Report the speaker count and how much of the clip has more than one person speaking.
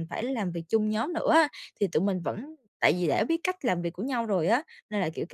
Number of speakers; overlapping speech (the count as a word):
one, no overlap